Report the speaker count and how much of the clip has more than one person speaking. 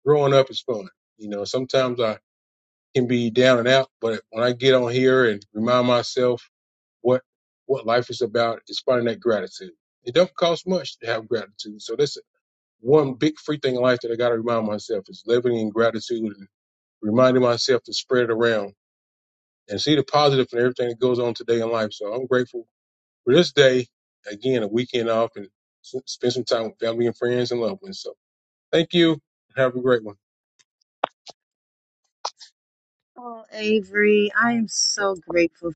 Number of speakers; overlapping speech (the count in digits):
2, no overlap